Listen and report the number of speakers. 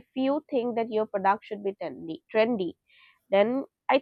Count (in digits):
1